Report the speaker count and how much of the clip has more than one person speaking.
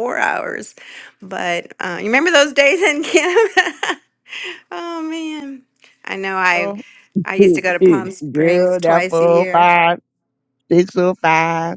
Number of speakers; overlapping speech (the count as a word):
two, about 19%